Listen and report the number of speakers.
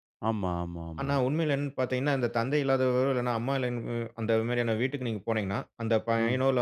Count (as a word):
two